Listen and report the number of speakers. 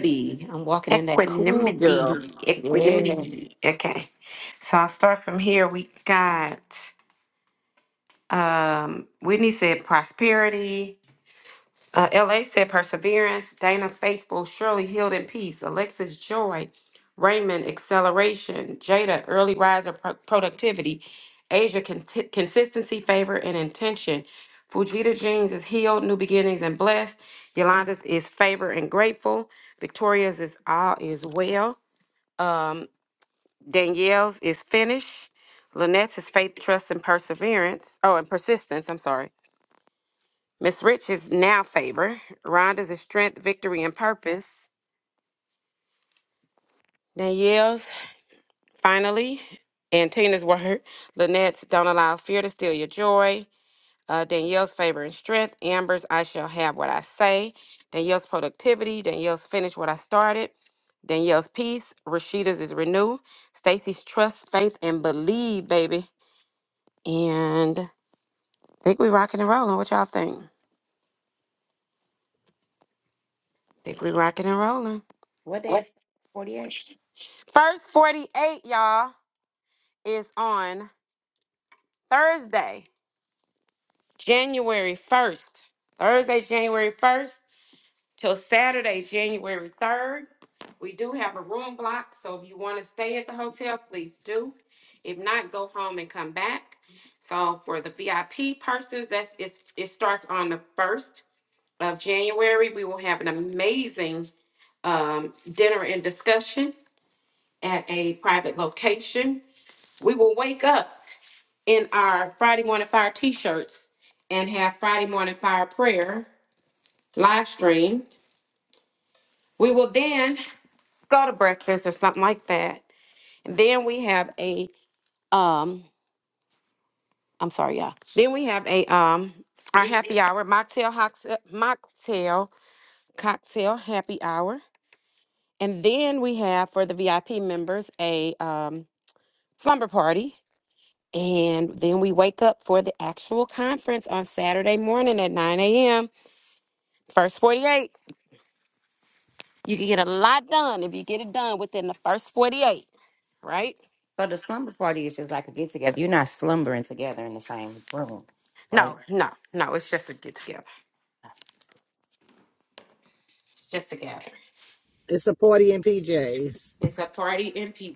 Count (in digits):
4